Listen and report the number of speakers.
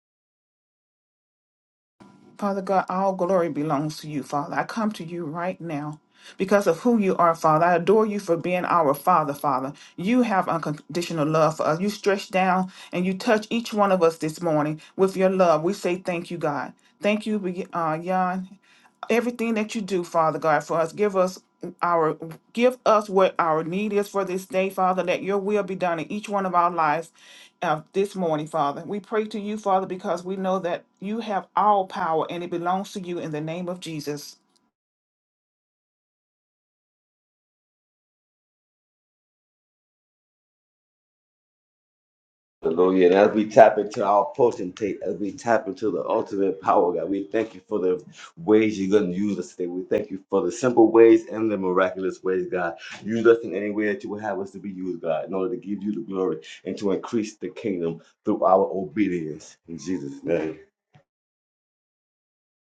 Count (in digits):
2